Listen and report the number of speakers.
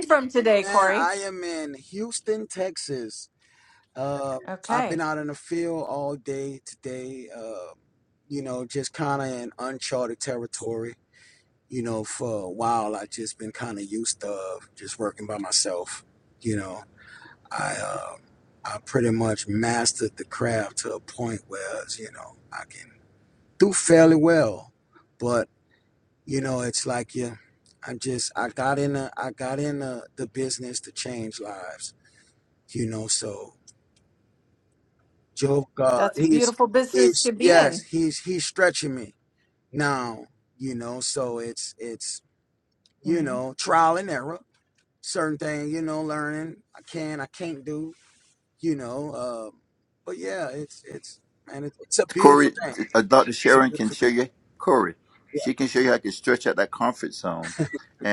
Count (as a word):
three